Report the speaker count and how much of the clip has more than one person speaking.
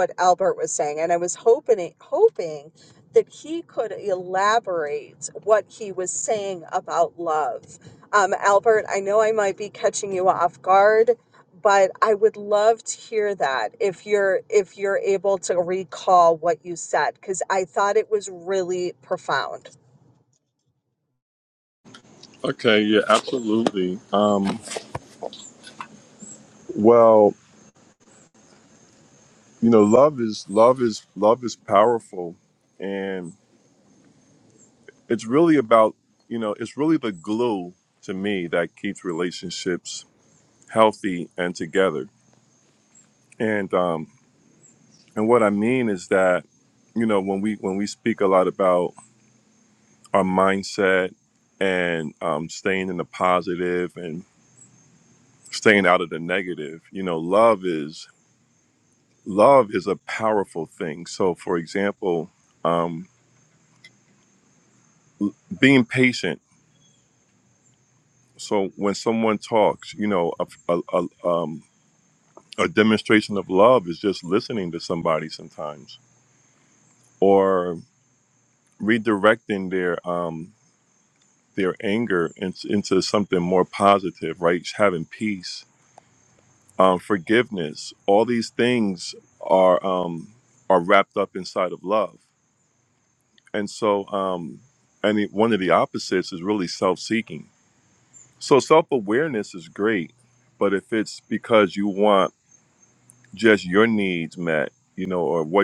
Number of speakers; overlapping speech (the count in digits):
2, no overlap